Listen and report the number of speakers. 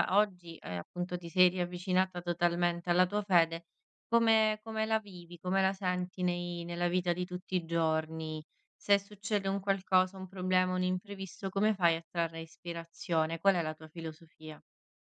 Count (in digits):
1